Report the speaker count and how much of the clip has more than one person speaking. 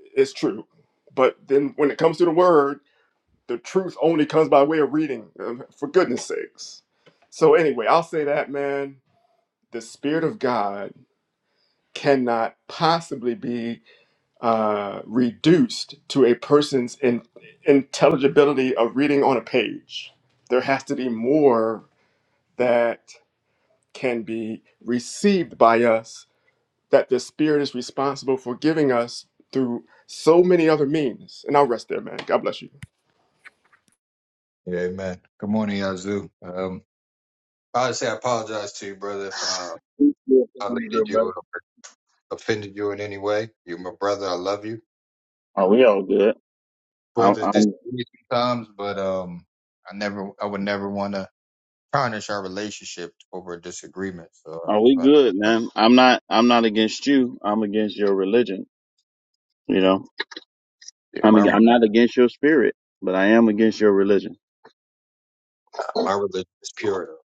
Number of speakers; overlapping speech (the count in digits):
3, about 2%